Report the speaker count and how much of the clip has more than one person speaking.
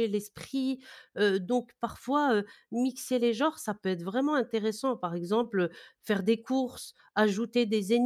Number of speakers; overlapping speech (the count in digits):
1, no overlap